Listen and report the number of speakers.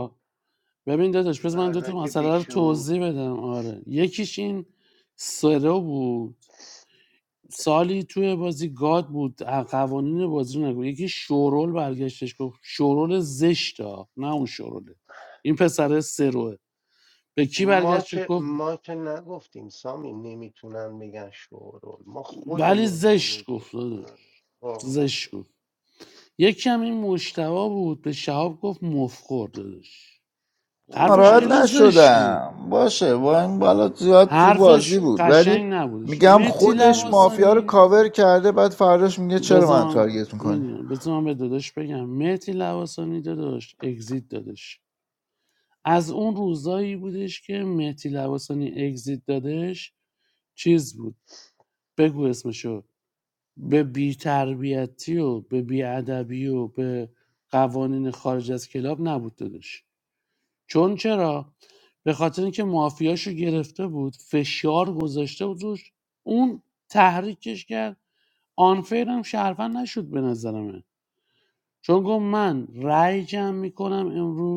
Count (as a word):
three